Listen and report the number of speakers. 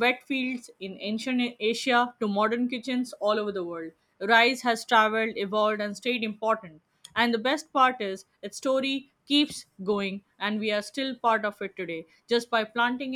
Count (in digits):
1